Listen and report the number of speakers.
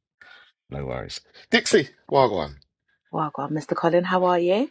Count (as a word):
two